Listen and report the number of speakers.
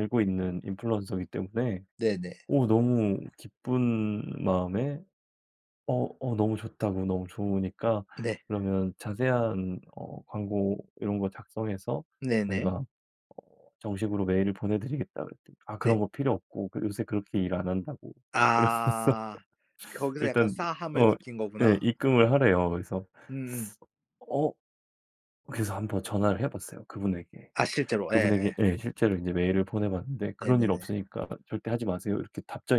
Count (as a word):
two